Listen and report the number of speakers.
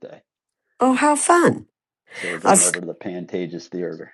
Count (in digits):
2